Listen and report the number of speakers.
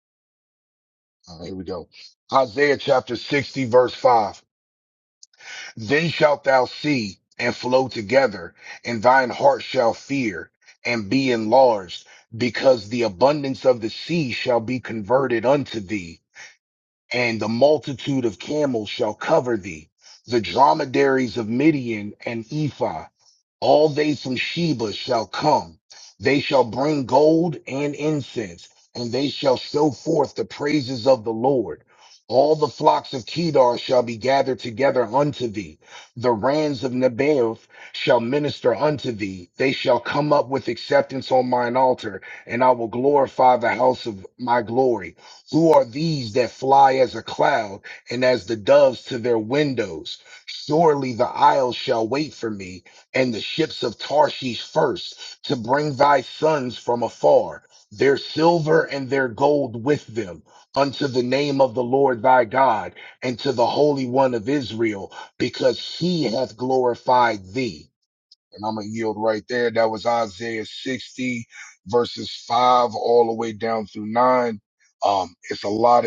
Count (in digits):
1